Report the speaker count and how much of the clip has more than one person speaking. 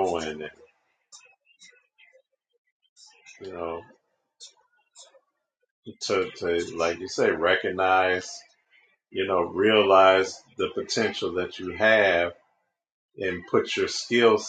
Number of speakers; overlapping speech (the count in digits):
1, no overlap